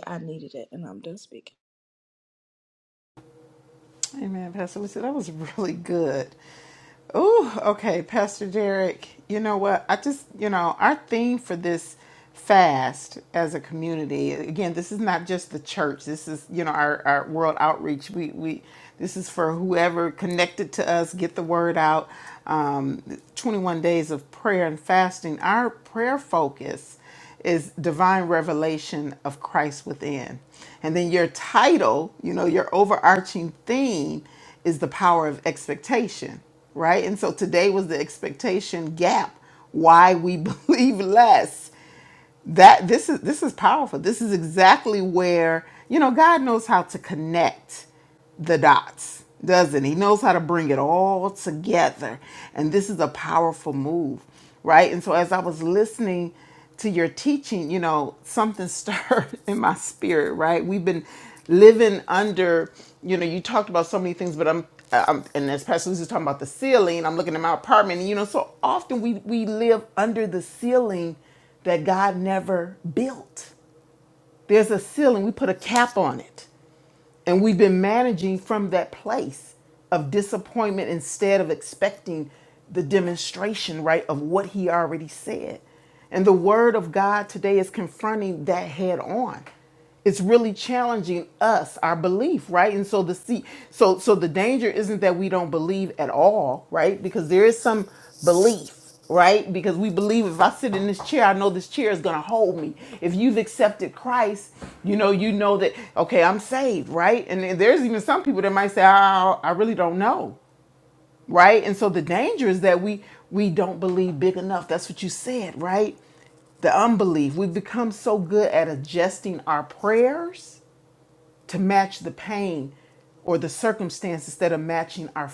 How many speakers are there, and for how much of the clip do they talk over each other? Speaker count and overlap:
2, no overlap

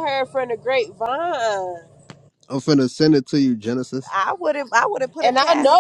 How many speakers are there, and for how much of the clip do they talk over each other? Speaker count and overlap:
3, about 10%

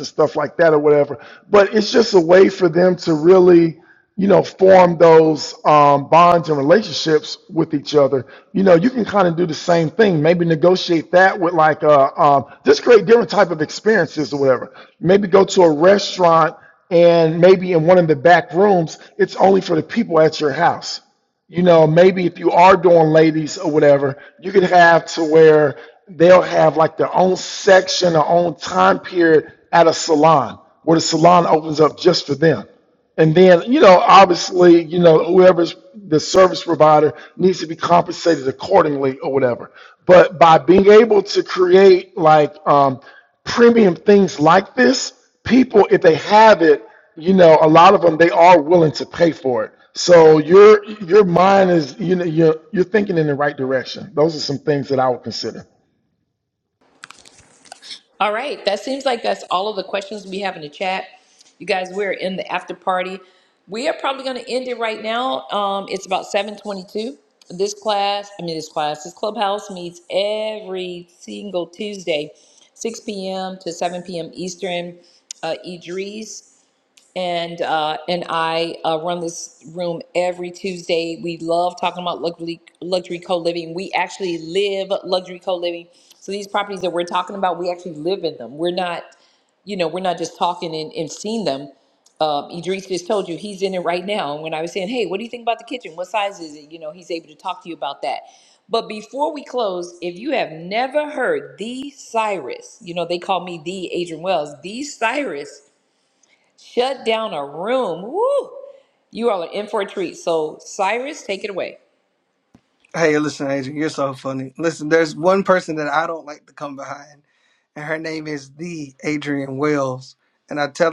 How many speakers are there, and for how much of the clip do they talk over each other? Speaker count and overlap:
3, no overlap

